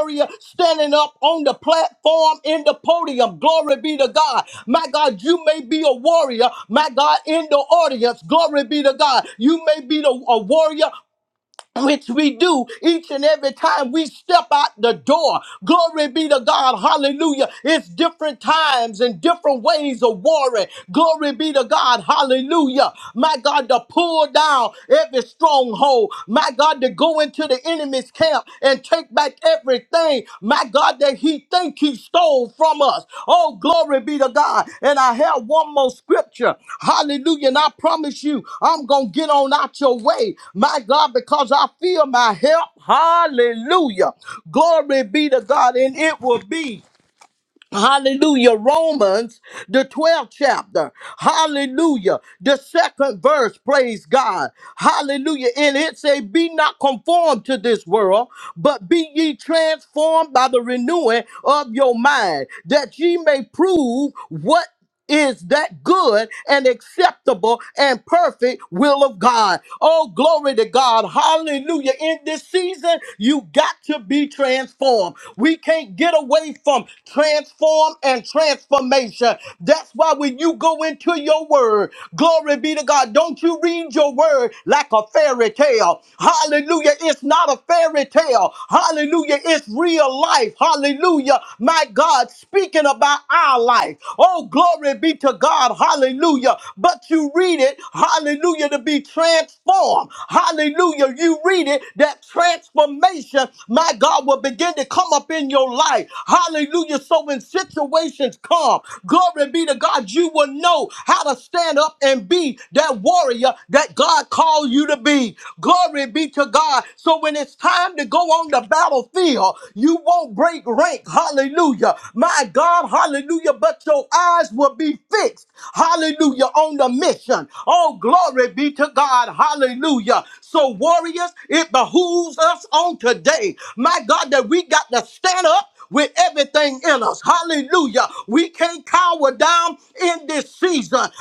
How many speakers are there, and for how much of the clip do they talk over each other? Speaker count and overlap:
1, no overlap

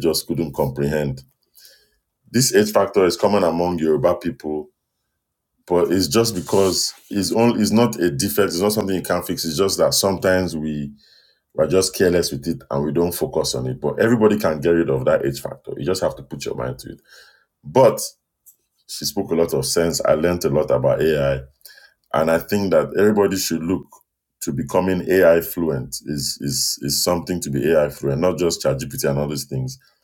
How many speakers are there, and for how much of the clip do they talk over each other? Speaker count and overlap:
1, no overlap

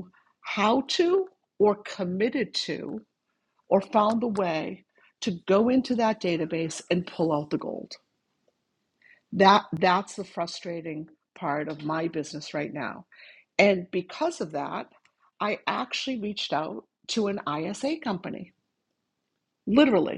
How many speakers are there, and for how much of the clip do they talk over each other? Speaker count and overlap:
1, no overlap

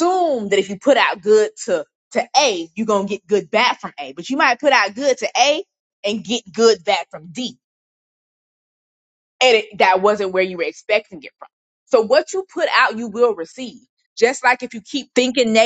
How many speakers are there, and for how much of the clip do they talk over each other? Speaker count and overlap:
1, no overlap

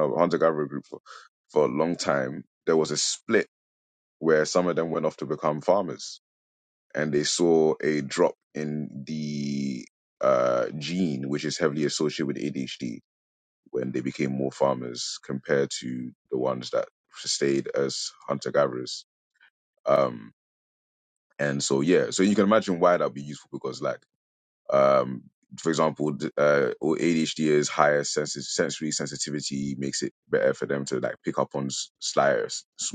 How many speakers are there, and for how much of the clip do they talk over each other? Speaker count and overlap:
1, no overlap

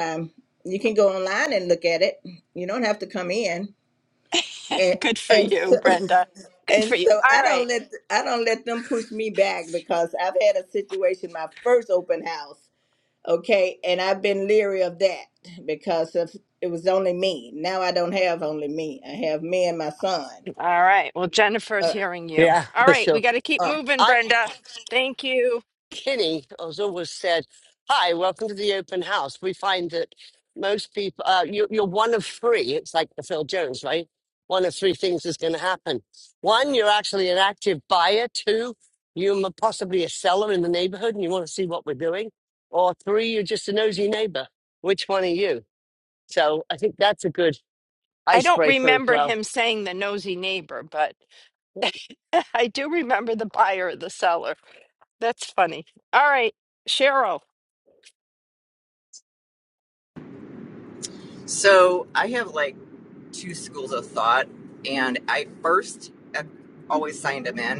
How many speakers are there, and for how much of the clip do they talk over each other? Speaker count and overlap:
4, about 6%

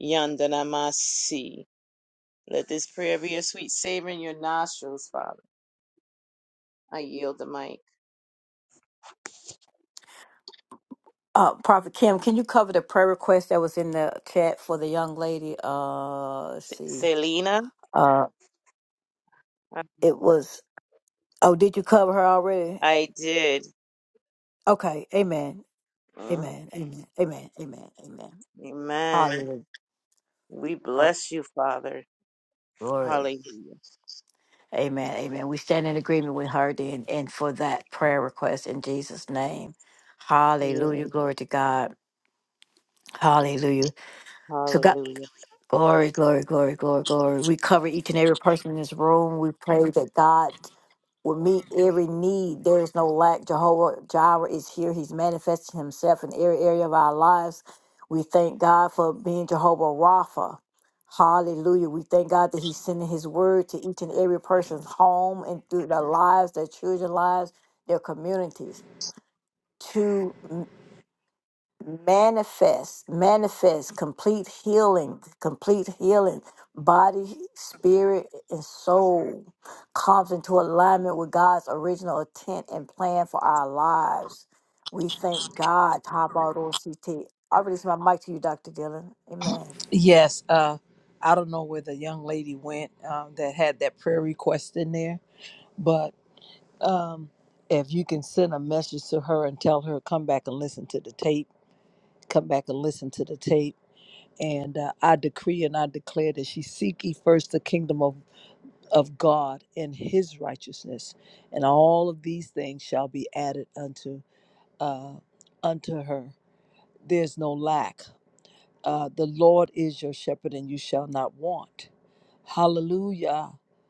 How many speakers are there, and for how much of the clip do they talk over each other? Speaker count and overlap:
3, about 1%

